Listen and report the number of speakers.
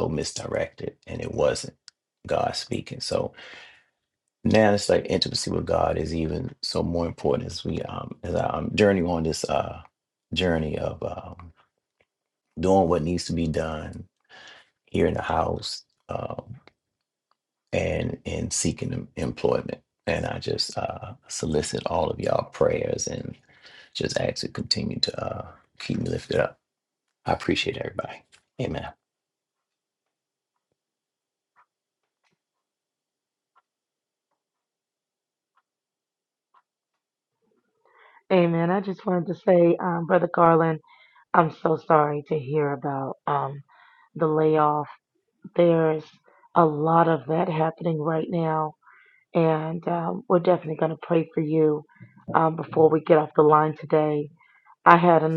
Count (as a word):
two